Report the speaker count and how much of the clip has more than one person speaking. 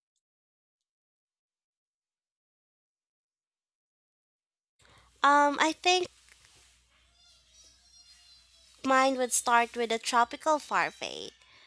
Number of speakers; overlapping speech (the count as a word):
one, no overlap